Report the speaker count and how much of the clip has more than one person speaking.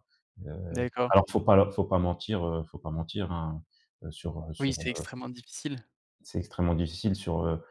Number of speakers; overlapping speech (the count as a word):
two, about 7%